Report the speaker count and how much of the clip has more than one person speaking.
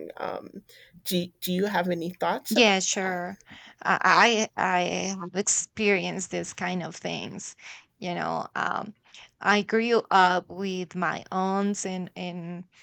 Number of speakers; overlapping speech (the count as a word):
two, about 5%